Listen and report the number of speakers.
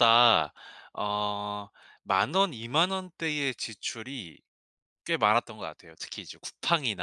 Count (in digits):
1